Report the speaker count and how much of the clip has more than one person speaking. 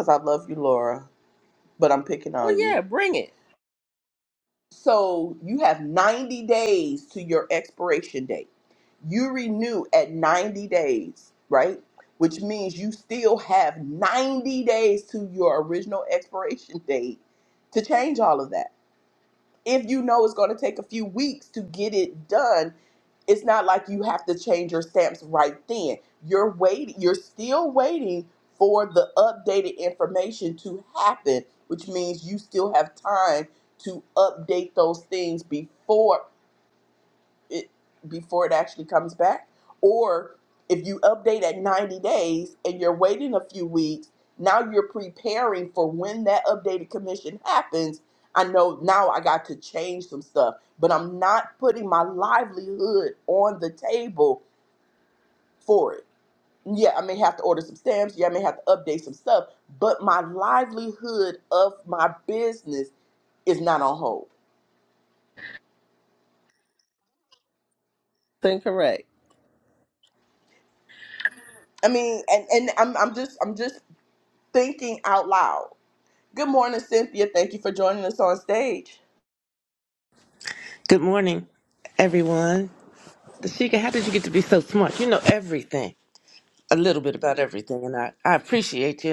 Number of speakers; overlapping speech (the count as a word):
three, under 1%